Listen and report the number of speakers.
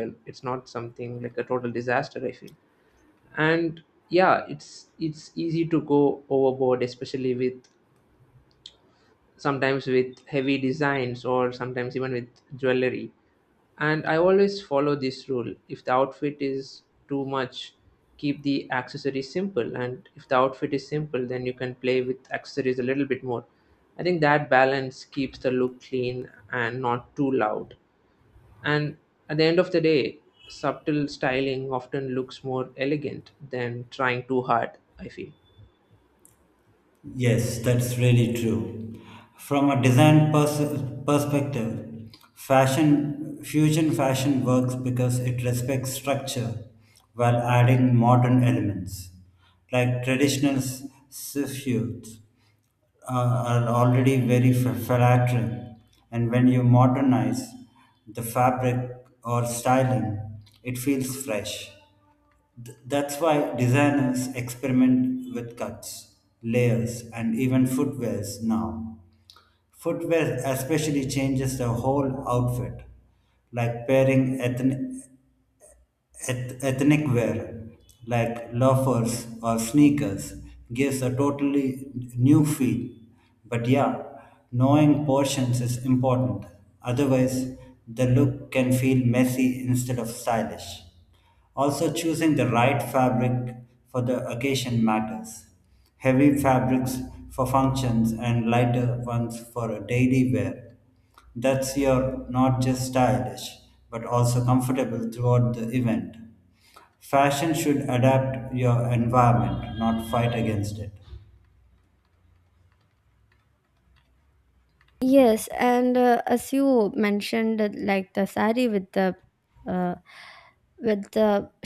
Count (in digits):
3